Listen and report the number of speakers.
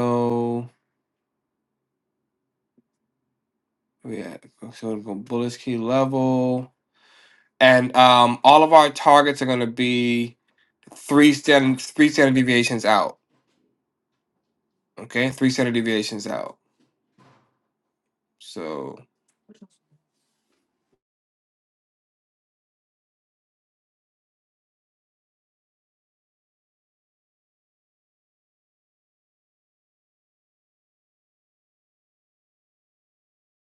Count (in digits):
1